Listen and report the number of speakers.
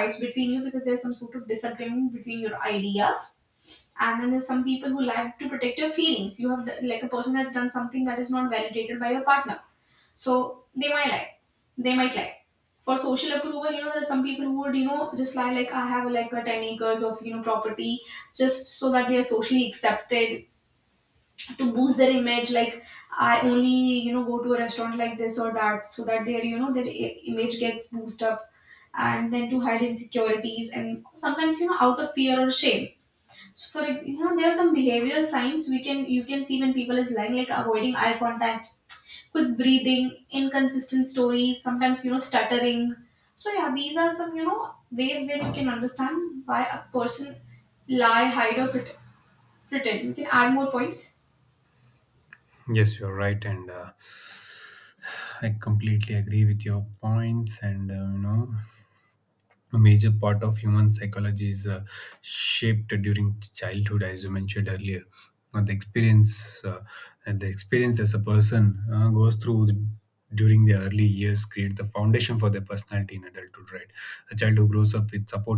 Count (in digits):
2